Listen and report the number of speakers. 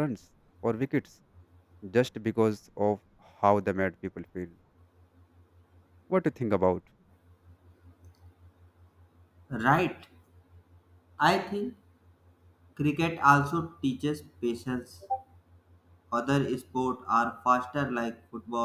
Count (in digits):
2